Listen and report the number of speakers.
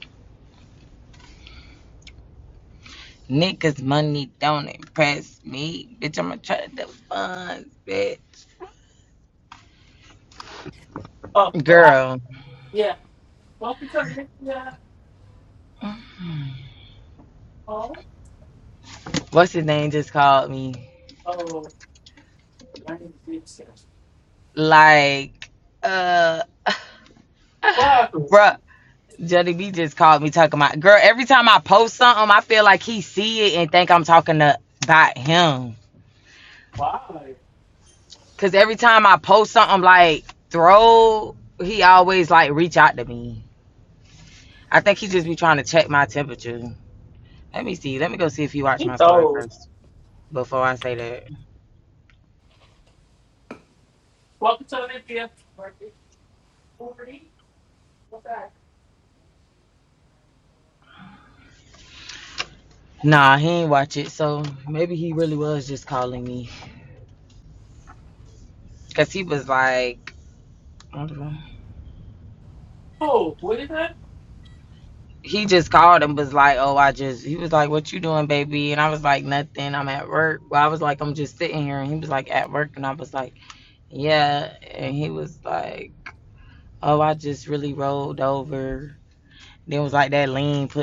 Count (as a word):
two